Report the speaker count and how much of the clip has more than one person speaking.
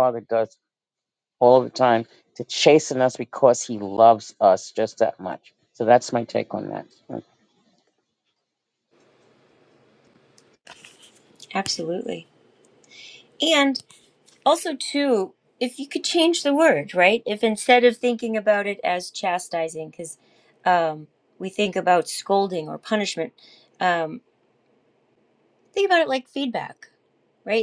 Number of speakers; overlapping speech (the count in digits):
2, no overlap